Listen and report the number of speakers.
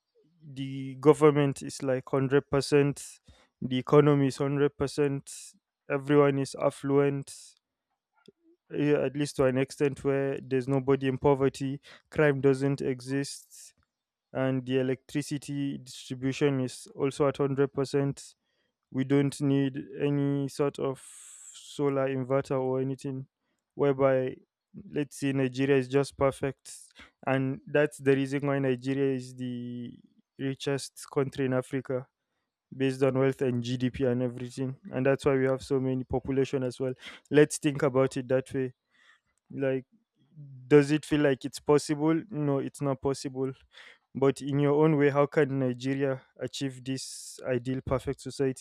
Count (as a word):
one